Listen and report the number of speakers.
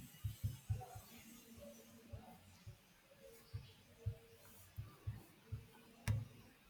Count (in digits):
0